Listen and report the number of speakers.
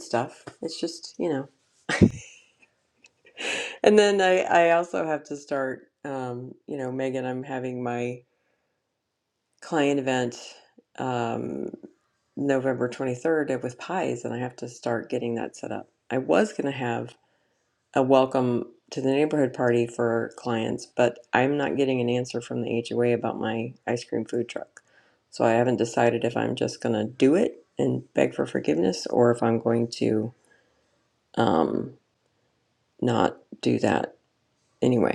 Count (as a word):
one